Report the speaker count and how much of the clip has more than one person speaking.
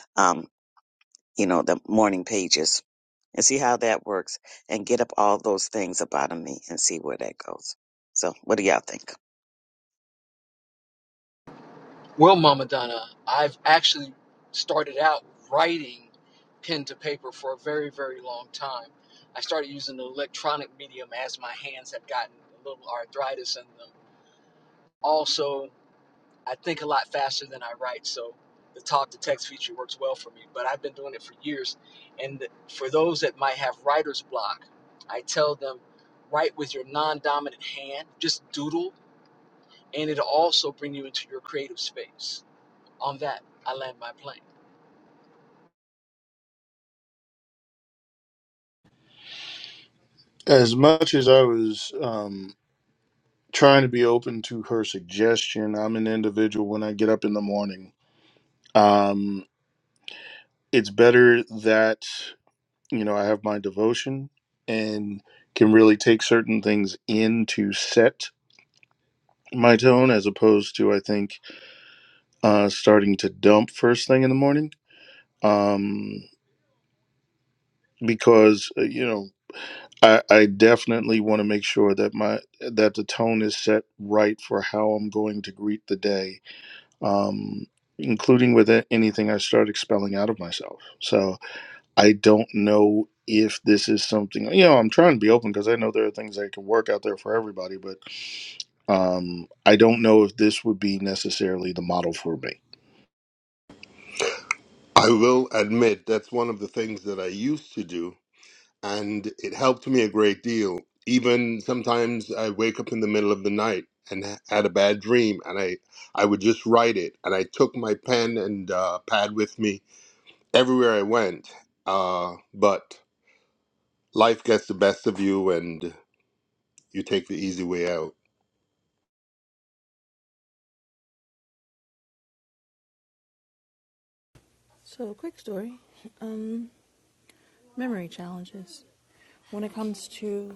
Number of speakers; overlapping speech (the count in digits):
5, no overlap